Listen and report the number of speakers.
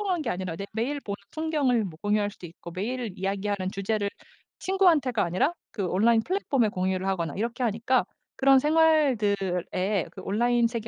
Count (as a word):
one